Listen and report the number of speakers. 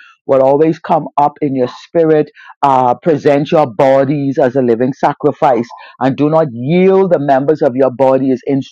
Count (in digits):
1